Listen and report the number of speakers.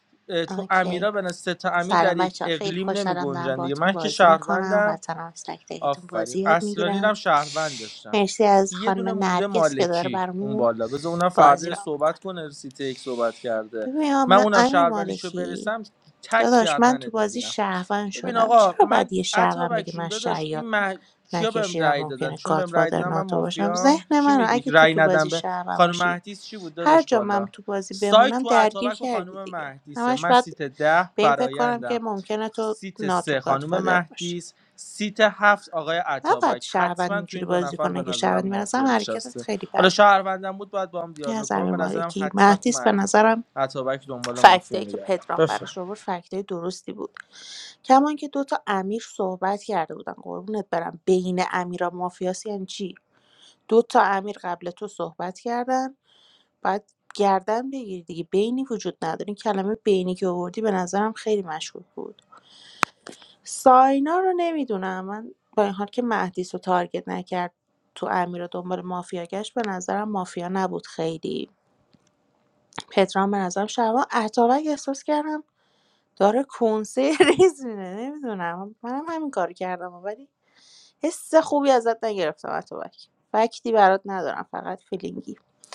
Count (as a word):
two